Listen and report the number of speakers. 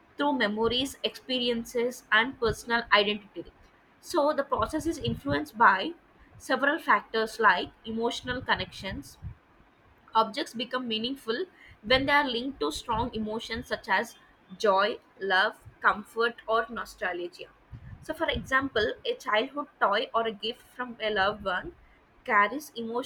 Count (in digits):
1